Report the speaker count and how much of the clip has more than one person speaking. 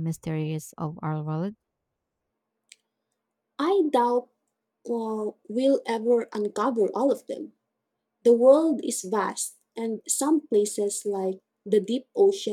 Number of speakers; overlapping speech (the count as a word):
two, no overlap